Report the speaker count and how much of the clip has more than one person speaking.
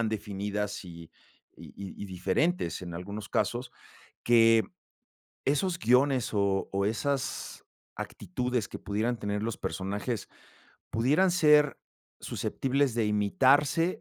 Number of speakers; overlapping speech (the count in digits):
1, no overlap